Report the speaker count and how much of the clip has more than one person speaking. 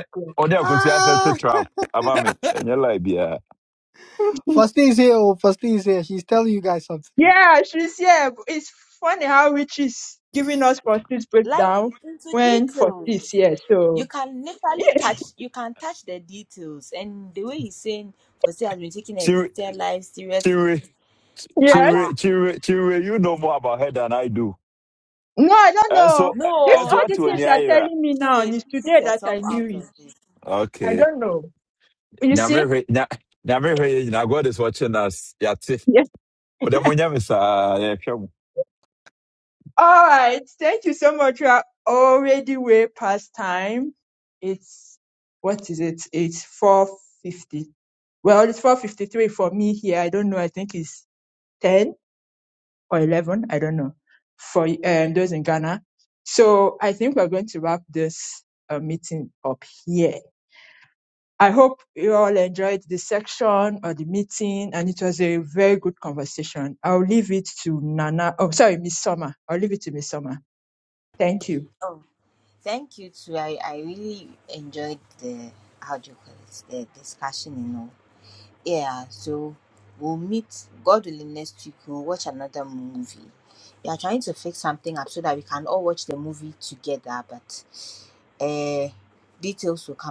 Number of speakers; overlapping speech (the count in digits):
4, about 8%